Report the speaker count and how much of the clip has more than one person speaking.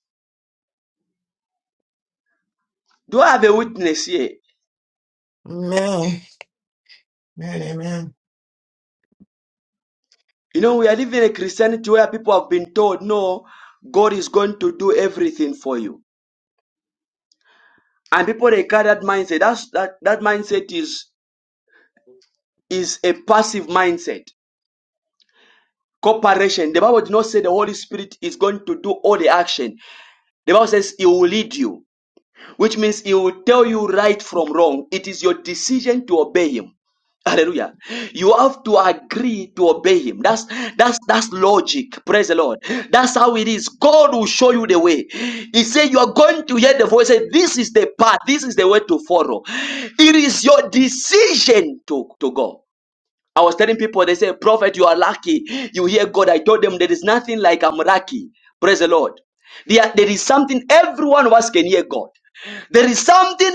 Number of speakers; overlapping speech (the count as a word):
two, no overlap